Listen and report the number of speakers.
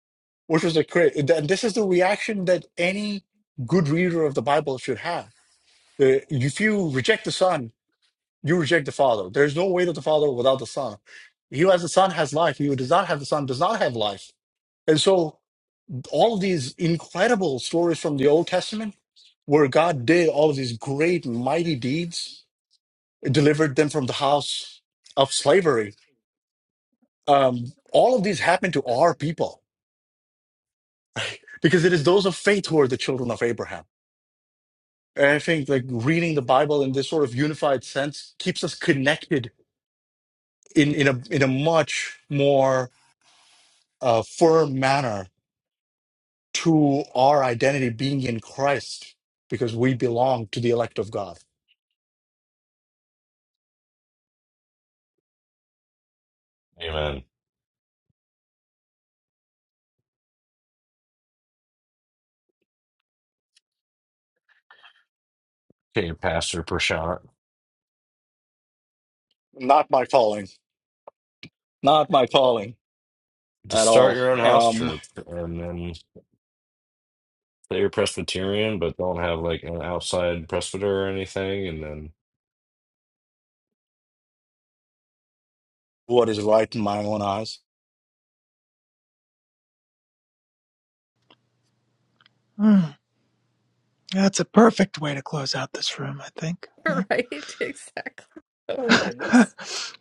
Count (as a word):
four